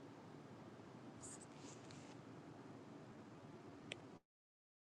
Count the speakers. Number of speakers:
zero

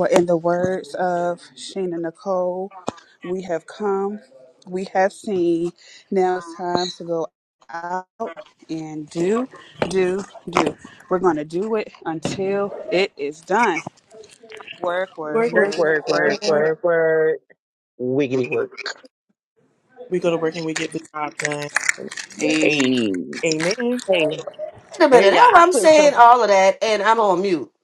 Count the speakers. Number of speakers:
four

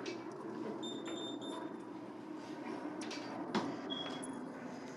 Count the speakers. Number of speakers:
zero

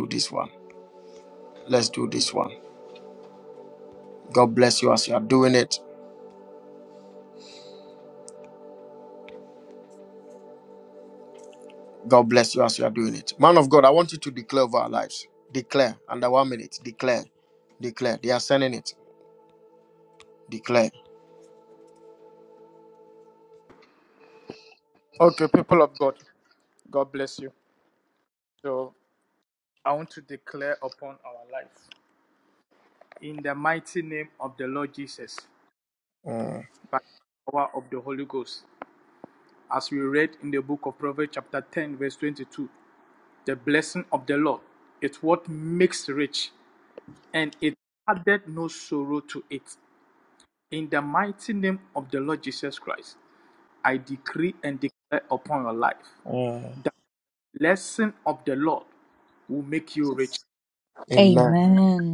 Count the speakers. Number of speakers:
three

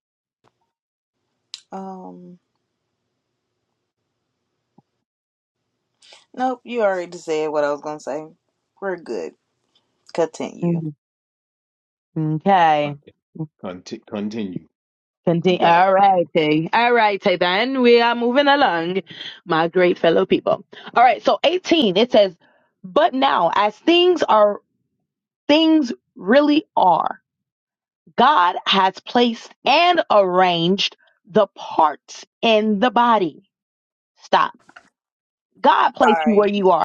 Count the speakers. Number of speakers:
three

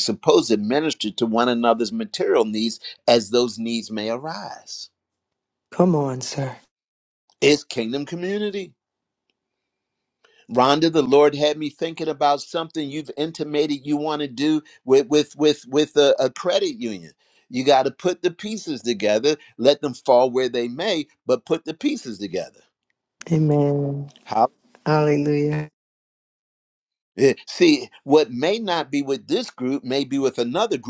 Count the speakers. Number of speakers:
two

